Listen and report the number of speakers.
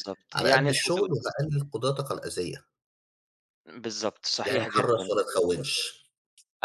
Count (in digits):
2